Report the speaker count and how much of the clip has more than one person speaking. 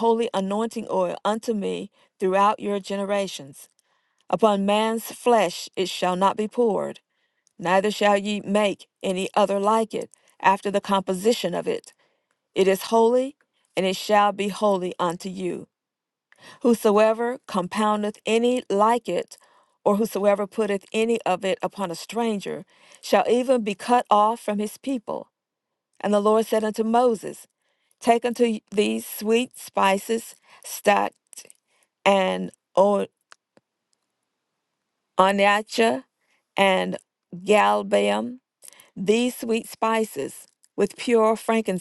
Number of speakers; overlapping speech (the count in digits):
1, no overlap